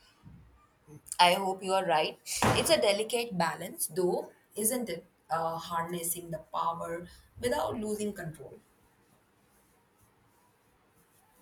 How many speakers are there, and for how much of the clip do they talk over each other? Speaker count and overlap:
1, no overlap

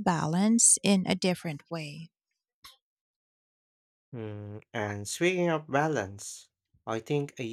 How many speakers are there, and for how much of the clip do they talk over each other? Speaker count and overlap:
2, no overlap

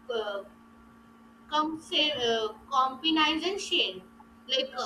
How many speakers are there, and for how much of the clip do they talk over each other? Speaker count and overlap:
1, no overlap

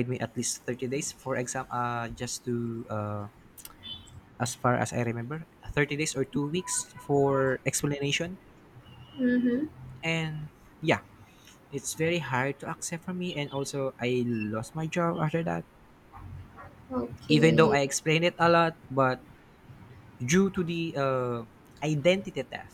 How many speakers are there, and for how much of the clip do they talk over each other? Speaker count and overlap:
2, about 2%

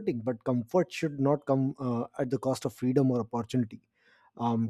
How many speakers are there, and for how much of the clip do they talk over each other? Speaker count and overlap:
1, no overlap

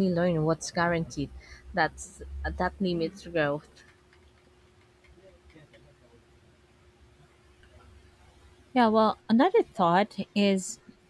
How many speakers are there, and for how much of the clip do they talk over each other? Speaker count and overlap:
2, no overlap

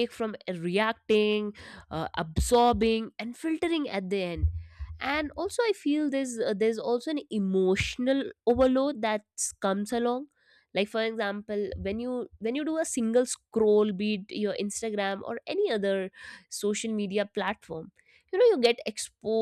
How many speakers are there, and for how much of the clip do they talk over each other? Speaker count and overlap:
1, no overlap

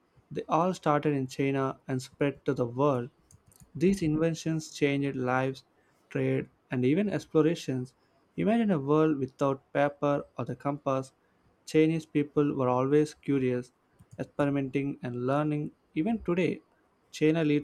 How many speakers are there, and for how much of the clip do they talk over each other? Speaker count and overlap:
1, no overlap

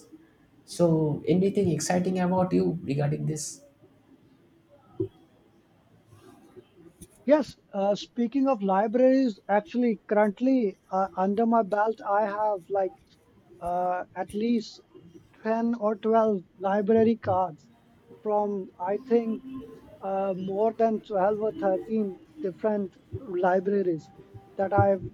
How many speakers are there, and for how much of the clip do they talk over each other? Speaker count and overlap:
2, no overlap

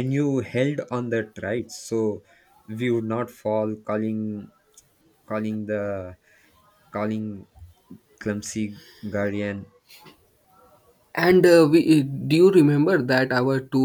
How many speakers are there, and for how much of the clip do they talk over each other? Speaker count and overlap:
2, no overlap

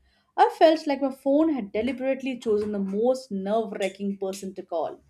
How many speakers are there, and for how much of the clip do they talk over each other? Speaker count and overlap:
1, no overlap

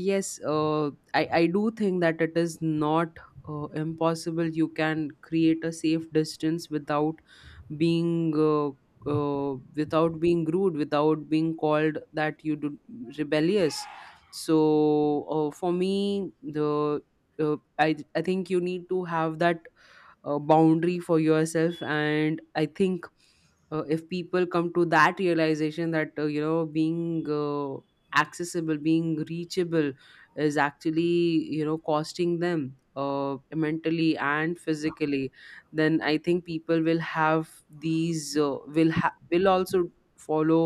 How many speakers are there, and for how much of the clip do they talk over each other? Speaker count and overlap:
1, no overlap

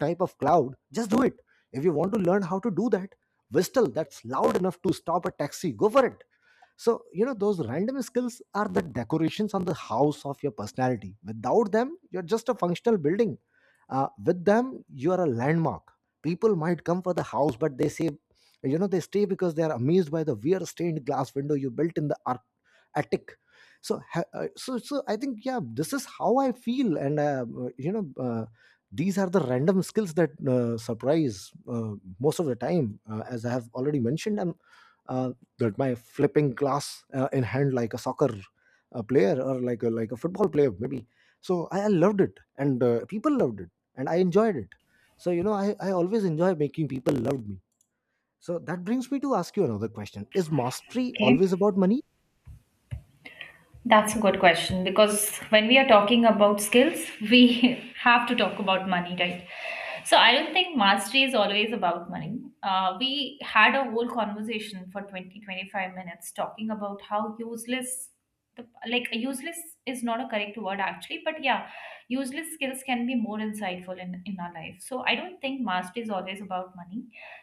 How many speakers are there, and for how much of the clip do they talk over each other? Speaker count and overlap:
2, under 1%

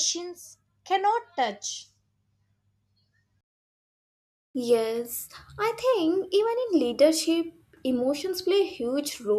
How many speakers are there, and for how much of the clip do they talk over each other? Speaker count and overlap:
2, no overlap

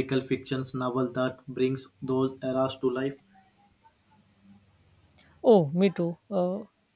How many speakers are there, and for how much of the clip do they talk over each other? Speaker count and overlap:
2, no overlap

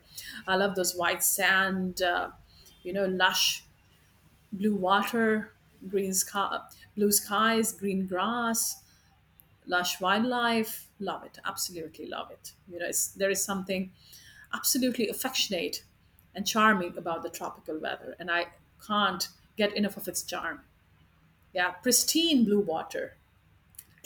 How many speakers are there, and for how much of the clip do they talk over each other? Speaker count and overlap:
1, no overlap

